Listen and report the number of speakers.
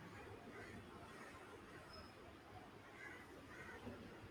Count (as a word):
zero